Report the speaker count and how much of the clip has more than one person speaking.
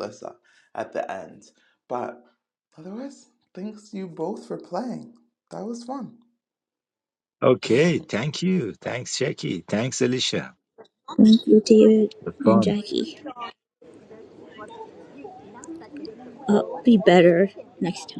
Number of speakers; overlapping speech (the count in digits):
3, about 3%